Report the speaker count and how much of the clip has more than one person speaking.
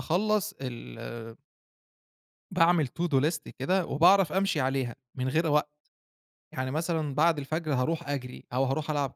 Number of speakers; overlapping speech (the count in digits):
1, no overlap